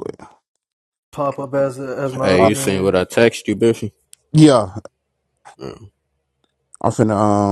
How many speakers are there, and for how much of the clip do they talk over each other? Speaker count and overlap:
three, about 9%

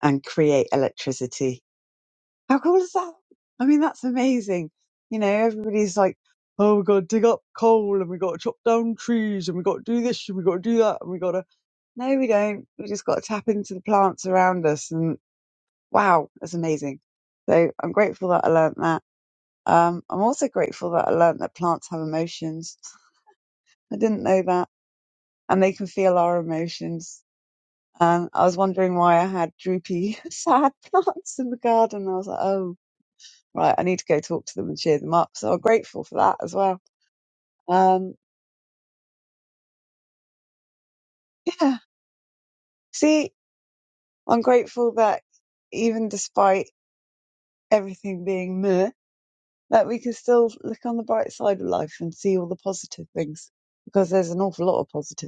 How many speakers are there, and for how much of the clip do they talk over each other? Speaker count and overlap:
one, no overlap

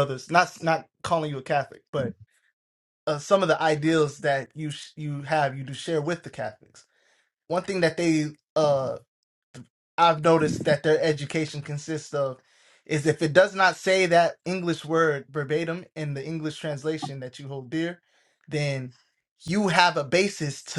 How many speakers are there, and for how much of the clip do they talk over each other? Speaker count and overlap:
one, no overlap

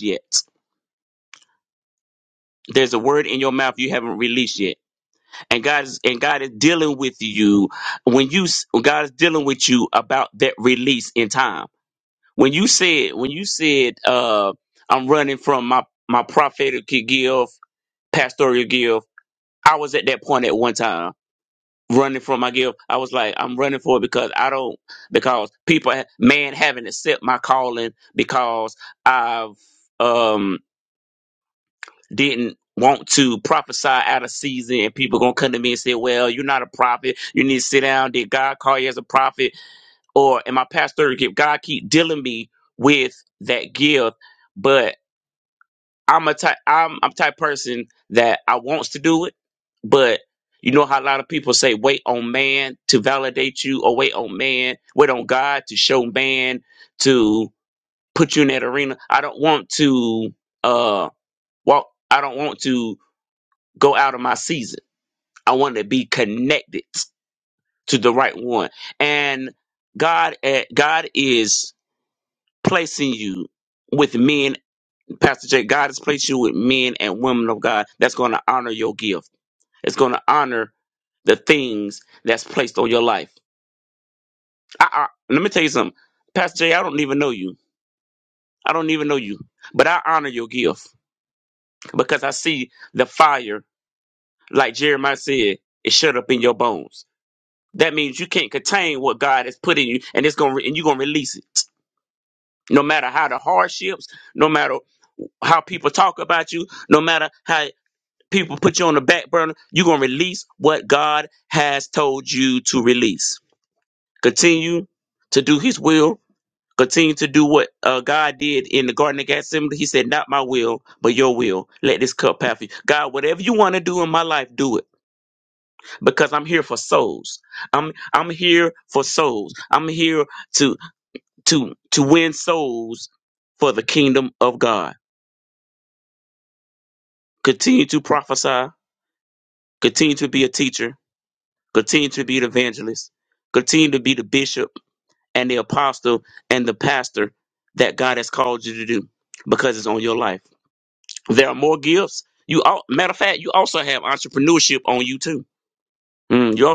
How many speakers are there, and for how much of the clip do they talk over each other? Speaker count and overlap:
one, no overlap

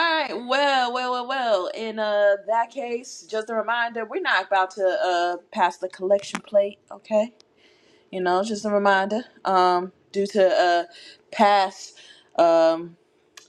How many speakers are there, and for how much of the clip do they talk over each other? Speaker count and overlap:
one, no overlap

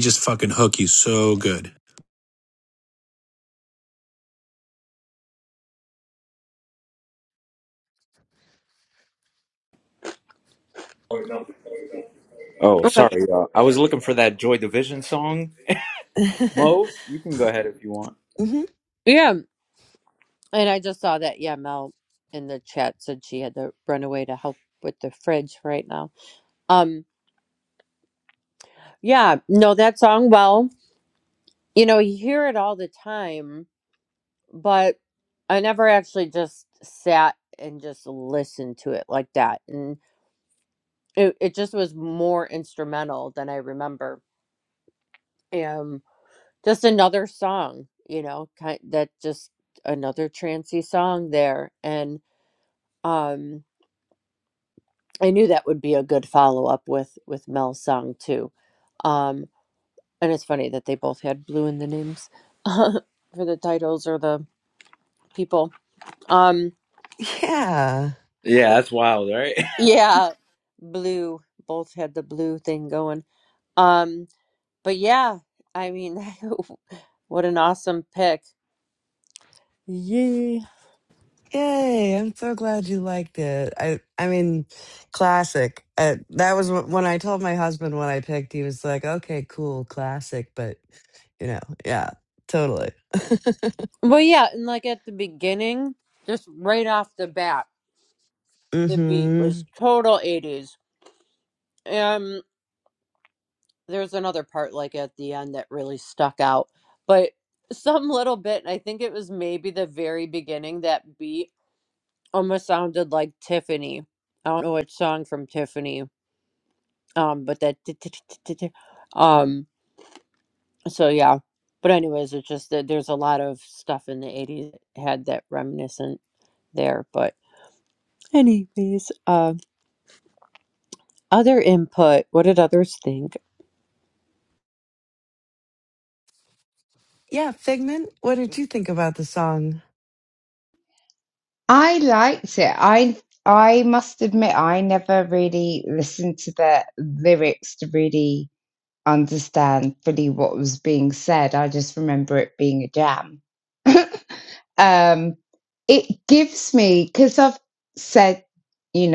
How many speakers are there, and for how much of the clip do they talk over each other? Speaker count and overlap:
five, about 1%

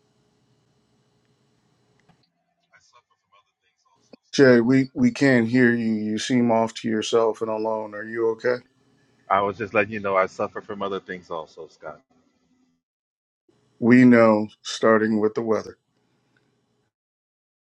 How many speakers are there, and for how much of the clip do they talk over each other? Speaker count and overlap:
two, no overlap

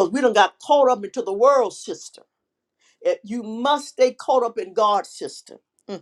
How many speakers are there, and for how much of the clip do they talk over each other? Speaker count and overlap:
one, no overlap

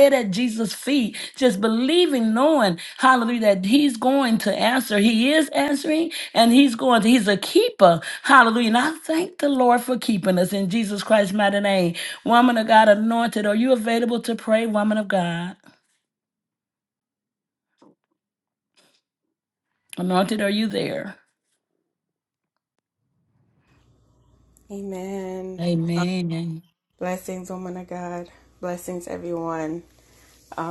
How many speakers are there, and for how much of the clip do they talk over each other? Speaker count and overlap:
two, no overlap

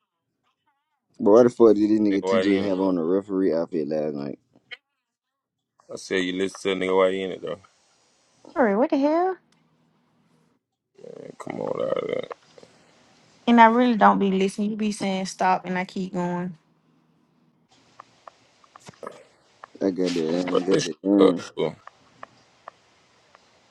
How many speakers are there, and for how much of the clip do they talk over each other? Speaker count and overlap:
three, about 8%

